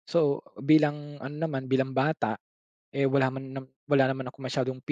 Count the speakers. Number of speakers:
1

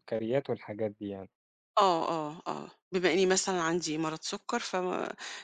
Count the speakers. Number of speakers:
2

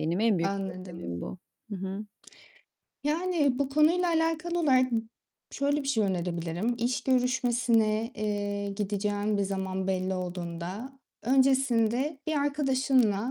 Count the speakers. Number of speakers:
2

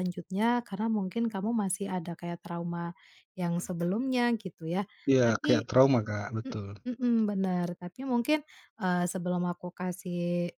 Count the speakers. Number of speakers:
2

